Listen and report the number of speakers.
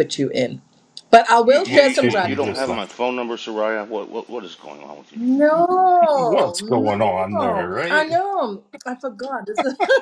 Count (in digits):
3